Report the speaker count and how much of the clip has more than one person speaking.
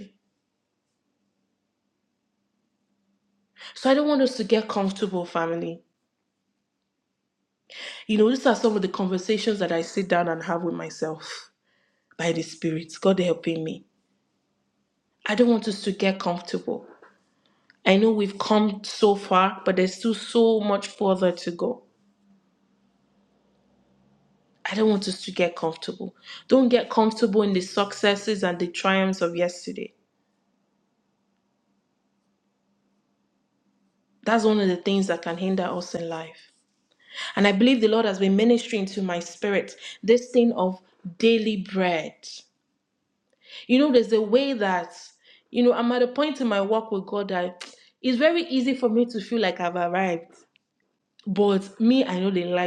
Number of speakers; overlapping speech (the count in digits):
1, no overlap